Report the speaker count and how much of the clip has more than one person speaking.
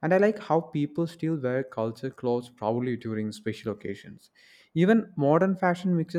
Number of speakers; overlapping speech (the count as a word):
one, no overlap